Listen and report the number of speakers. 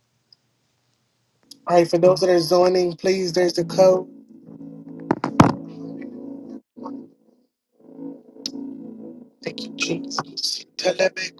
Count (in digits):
1